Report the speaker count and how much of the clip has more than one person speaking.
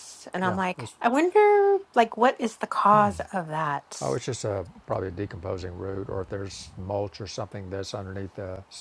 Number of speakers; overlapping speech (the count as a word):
two, about 5%